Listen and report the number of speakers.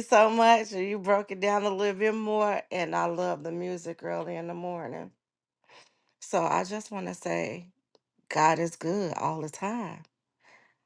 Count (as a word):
one